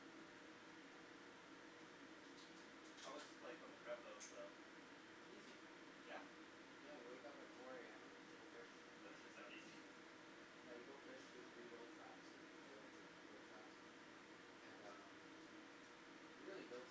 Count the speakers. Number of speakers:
two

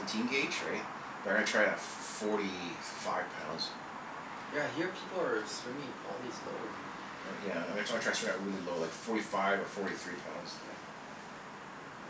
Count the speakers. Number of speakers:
two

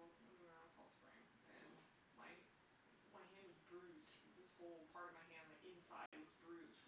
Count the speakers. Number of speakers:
one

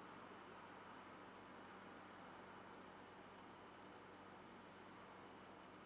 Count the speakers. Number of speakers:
zero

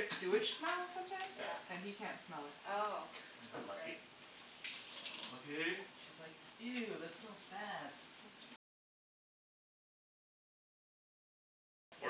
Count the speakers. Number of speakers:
four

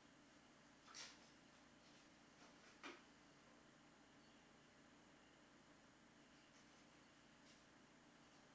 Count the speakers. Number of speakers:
zero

